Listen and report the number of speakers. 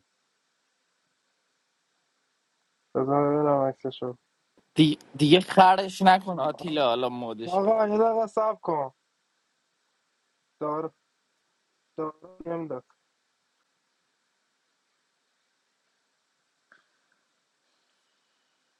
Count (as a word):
two